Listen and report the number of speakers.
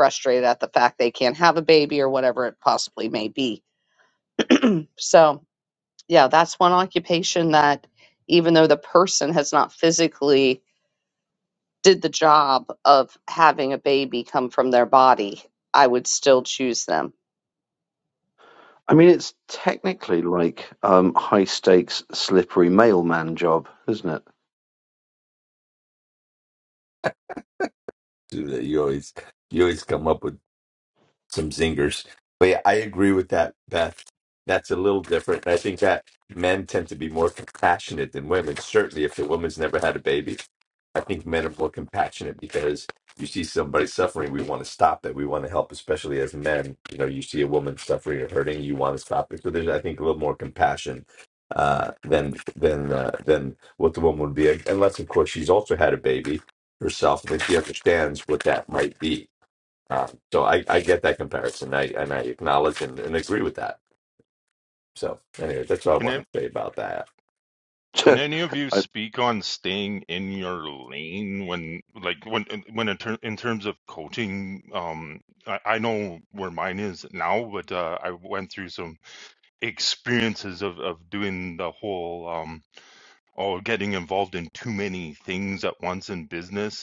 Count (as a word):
four